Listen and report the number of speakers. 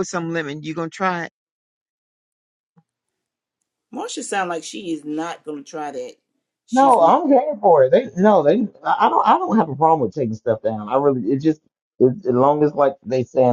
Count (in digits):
3